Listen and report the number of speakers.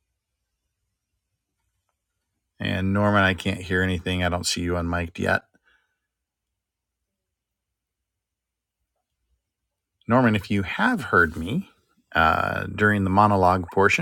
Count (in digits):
1